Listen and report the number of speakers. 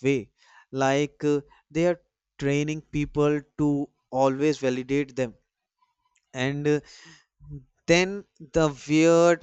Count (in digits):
1